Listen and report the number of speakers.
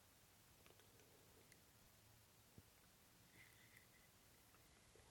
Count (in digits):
0